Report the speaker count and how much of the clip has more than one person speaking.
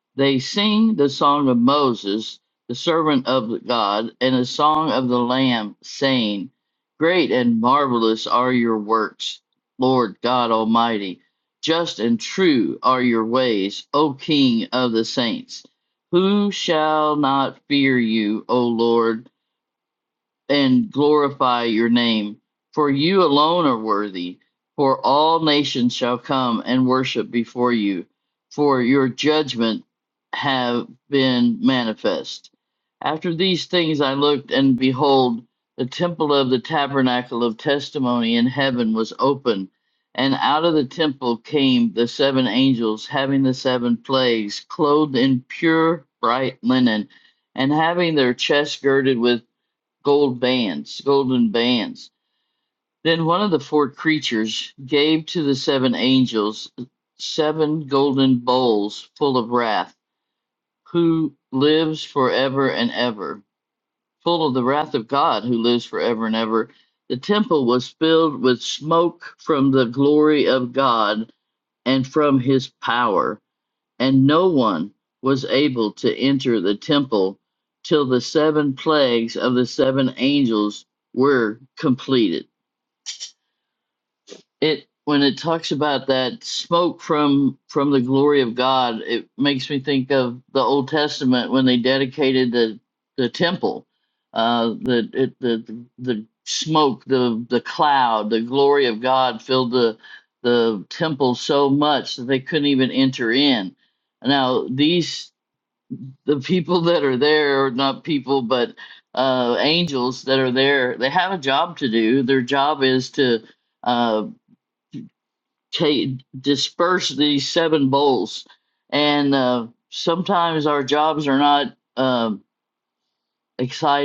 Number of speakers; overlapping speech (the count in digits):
1, no overlap